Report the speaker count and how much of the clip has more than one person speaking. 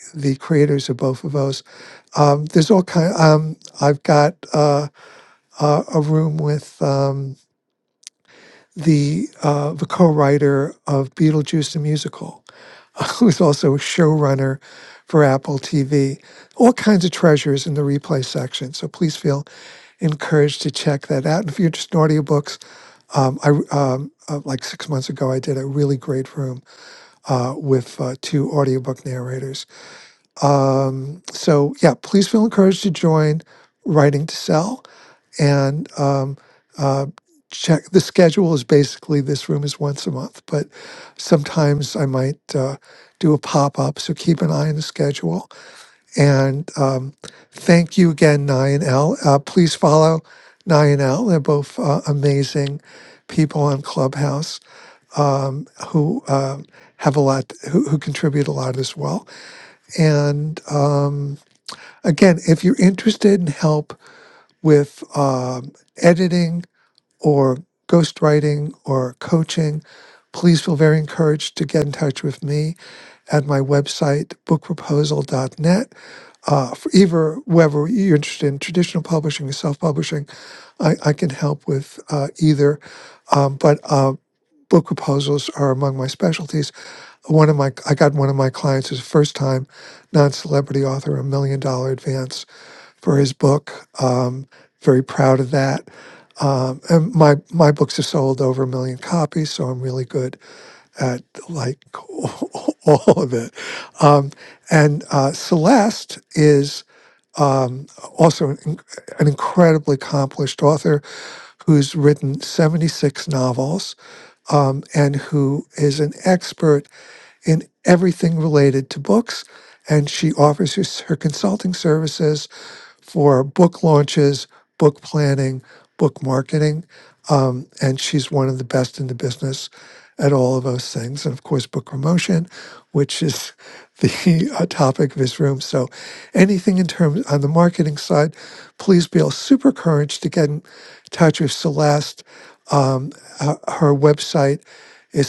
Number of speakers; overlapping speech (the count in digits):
1, no overlap